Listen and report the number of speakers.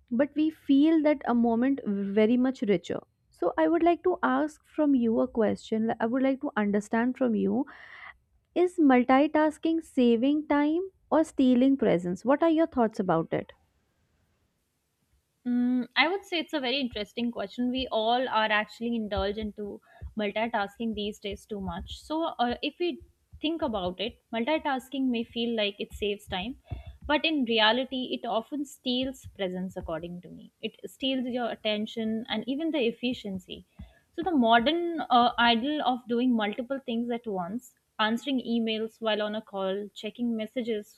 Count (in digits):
2